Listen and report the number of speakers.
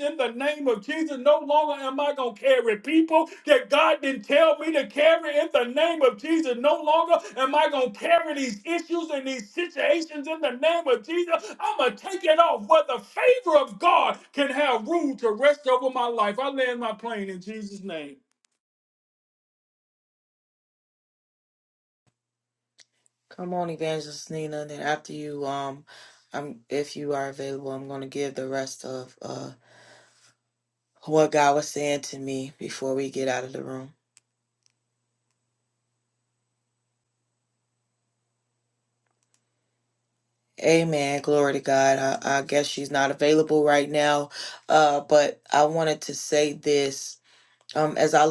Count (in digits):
2